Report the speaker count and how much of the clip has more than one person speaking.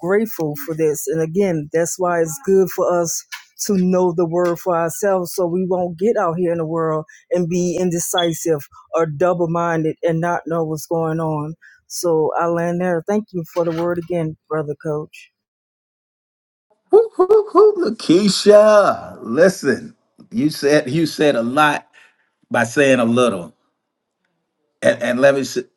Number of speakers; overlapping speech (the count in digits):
2, no overlap